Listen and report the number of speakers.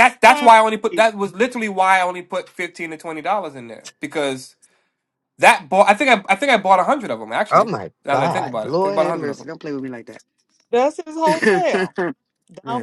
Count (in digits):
3